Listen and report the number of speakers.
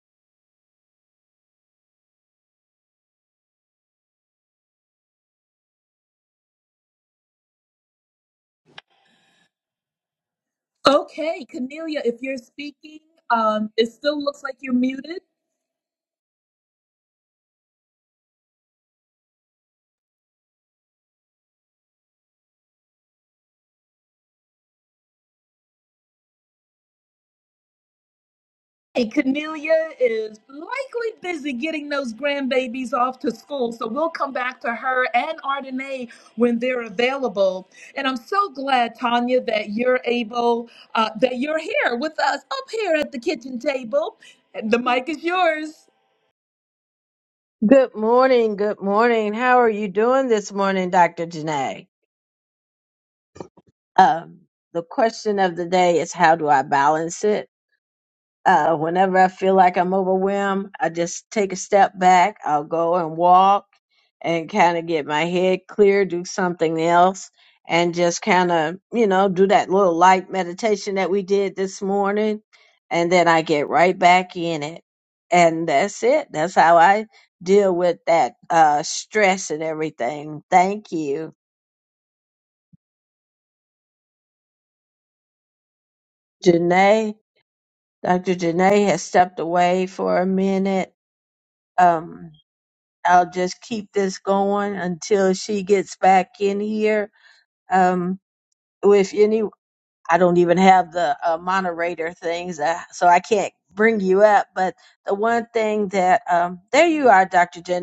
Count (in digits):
2